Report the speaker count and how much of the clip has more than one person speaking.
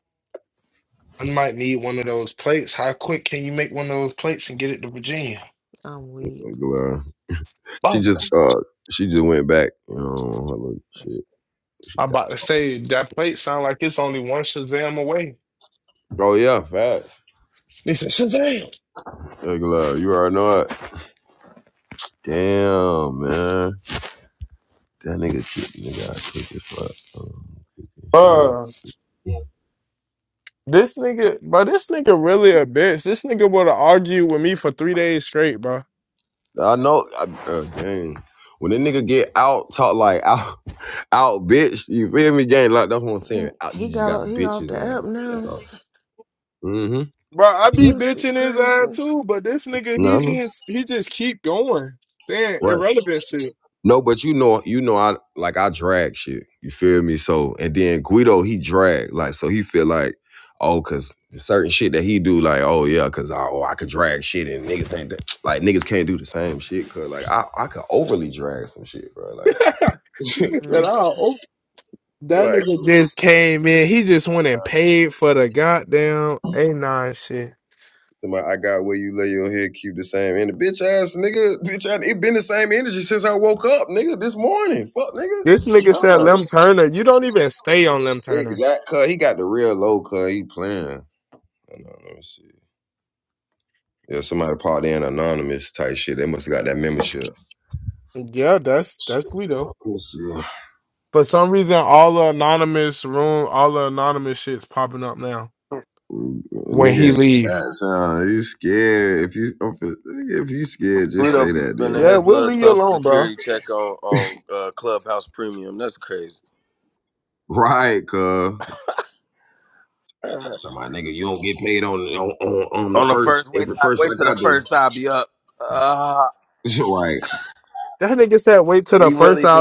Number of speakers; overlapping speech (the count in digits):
4, about 9%